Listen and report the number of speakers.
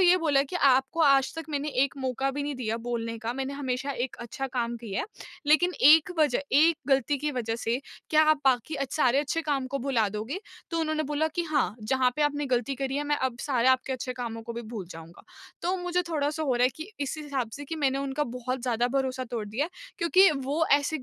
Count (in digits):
1